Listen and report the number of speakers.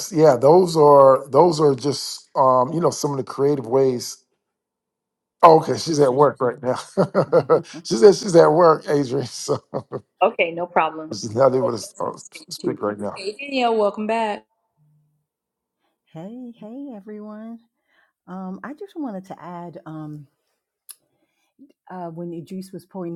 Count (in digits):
3